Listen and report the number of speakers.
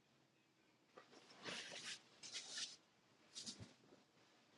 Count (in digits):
0